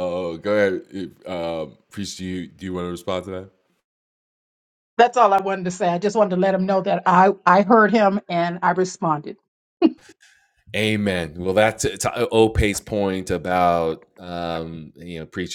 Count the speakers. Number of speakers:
2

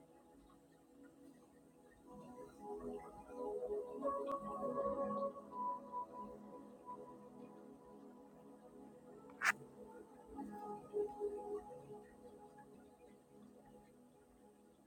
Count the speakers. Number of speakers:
0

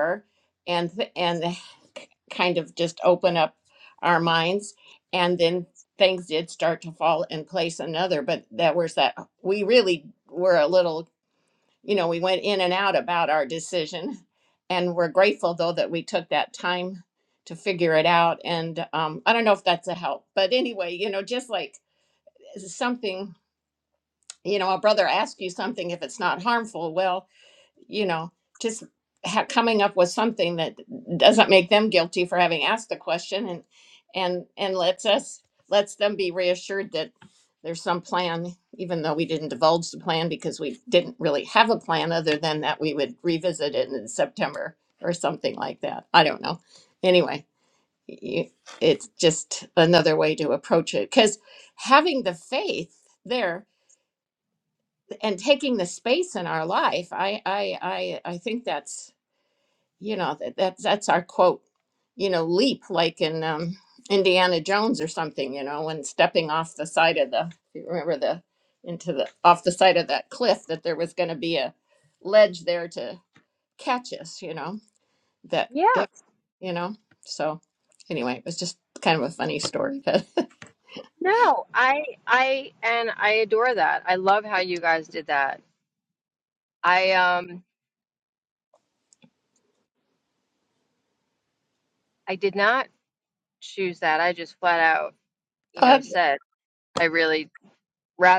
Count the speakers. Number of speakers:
2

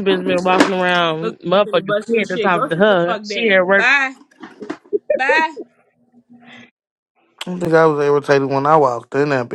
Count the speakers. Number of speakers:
3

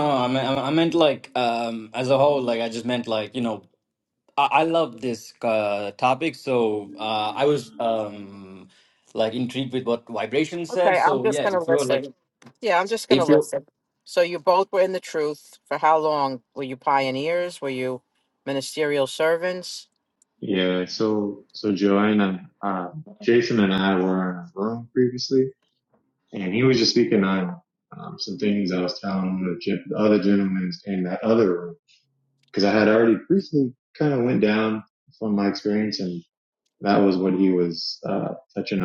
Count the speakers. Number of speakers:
3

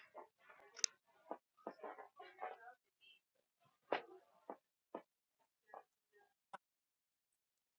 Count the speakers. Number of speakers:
0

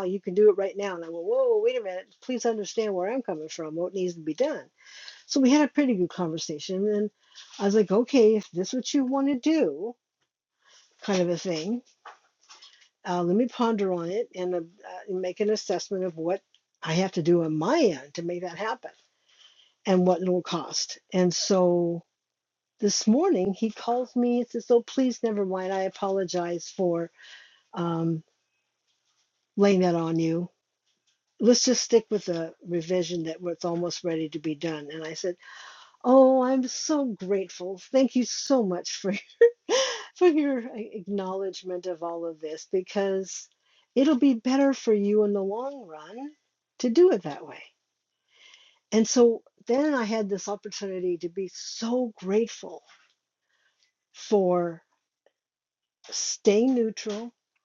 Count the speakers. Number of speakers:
1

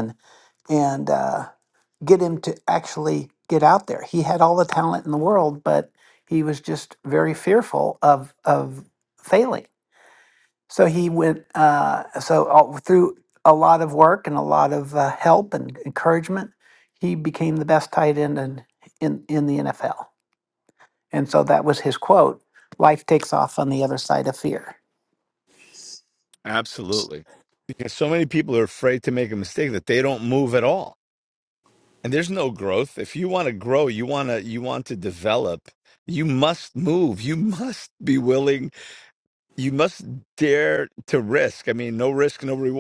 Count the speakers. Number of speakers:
2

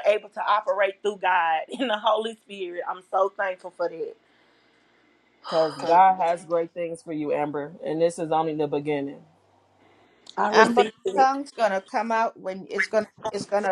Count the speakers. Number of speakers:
3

